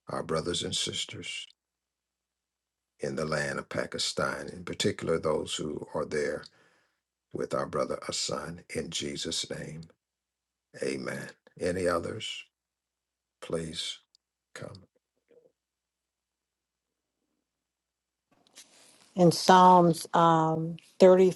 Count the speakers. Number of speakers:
2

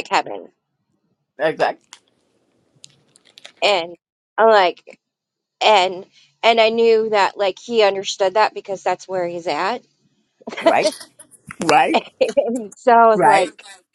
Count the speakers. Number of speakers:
2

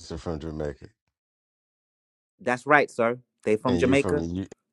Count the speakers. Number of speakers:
2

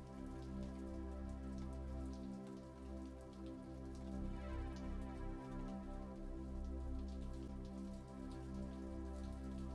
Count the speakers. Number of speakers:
0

